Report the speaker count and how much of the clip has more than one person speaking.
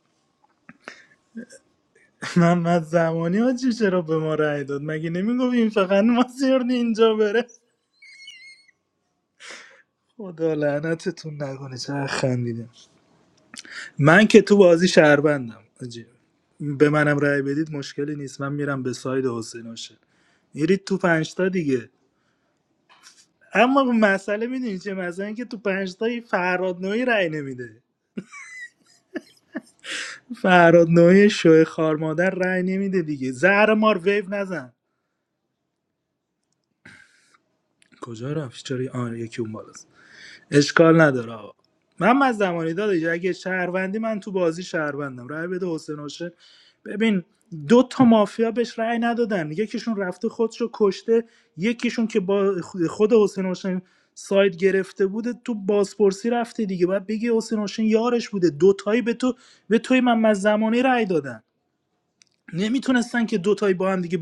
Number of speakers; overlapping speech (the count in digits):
1, no overlap